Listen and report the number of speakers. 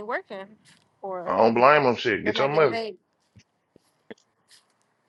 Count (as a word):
two